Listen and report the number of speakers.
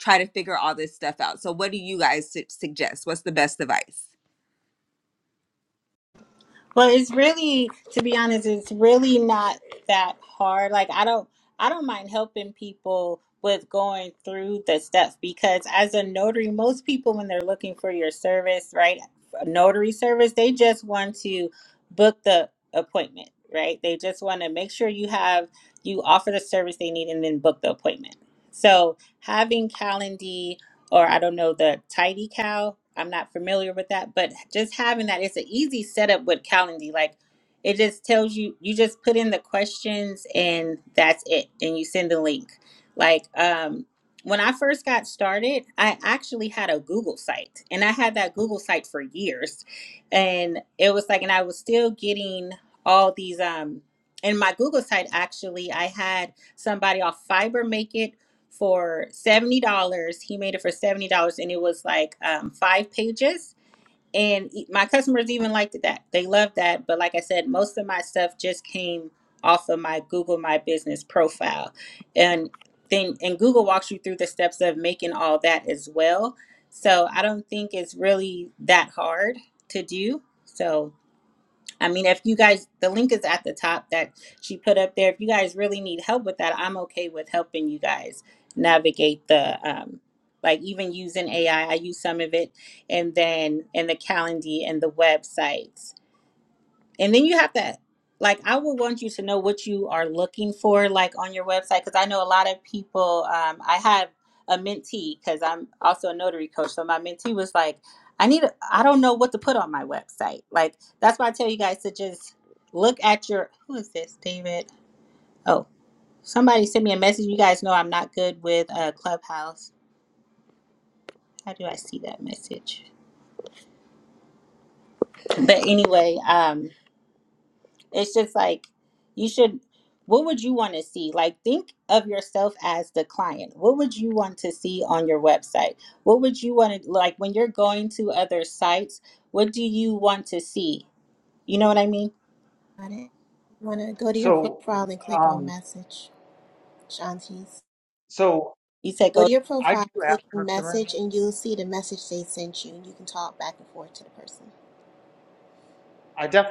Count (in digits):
4